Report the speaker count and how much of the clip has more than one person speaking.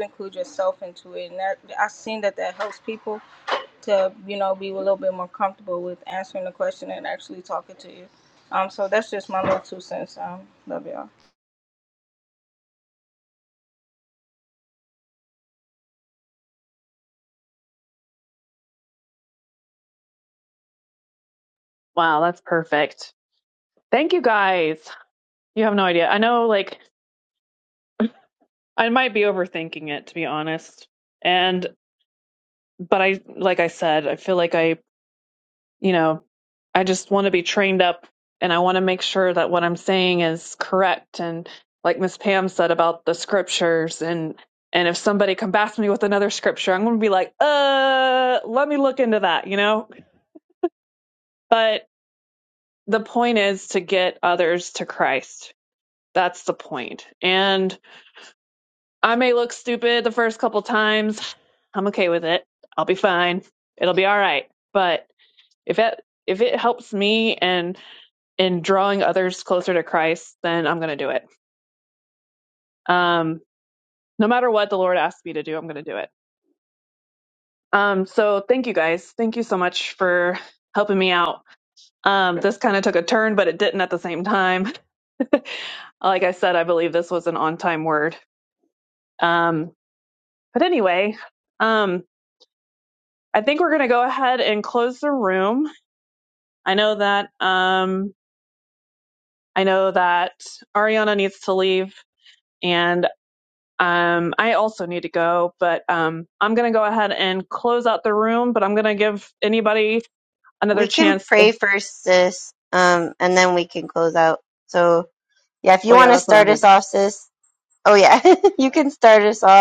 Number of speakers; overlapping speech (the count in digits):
3, about 1%